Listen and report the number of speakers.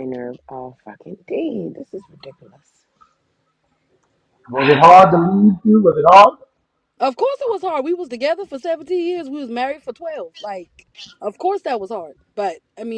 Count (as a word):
three